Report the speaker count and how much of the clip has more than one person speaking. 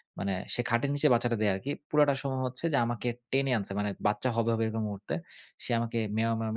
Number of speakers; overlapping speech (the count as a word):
one, no overlap